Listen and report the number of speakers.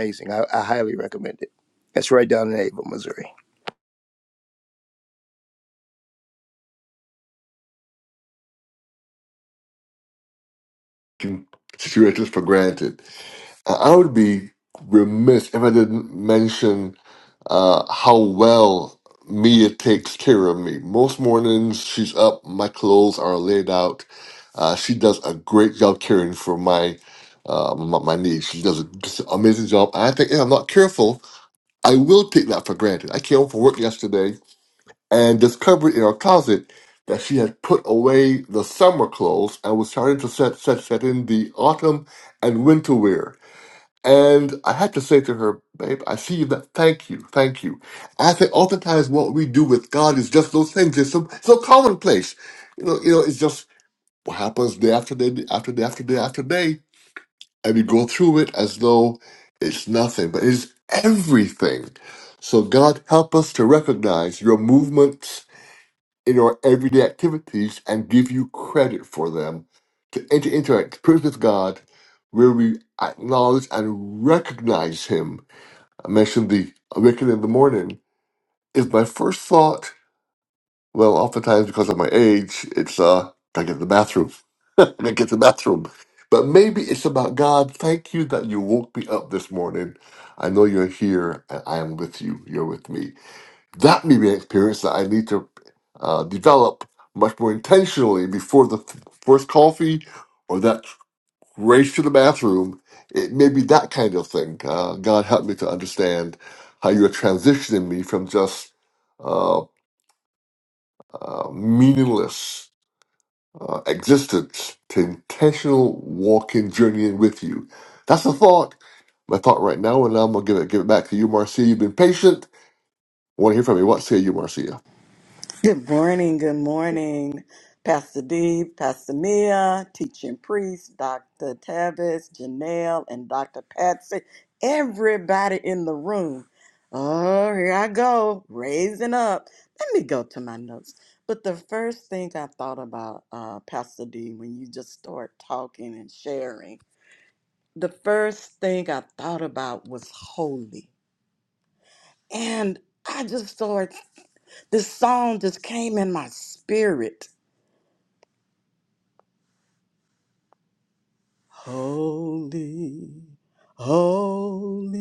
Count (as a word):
three